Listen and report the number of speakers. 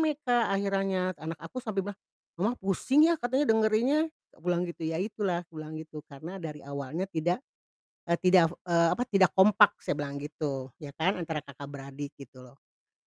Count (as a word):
one